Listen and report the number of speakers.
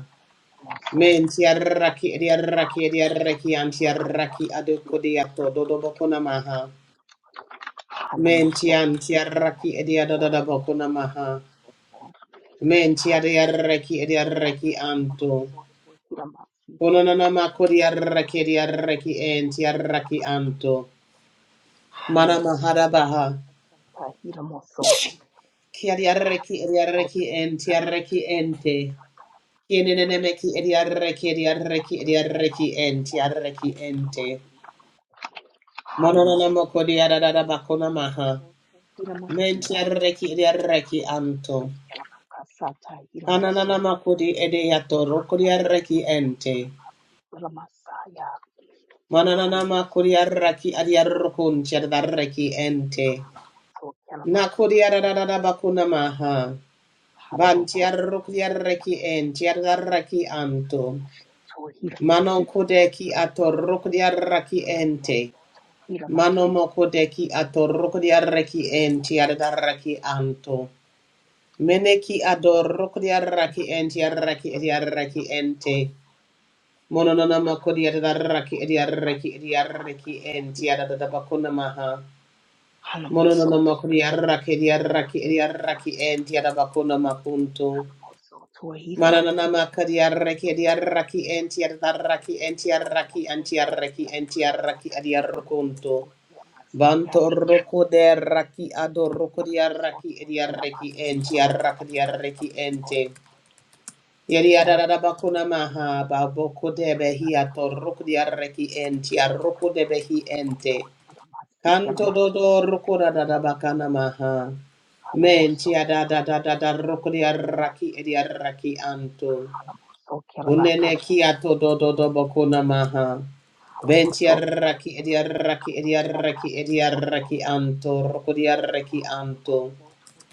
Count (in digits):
2